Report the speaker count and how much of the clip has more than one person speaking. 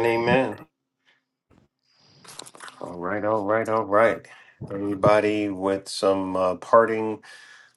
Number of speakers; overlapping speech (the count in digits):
1, no overlap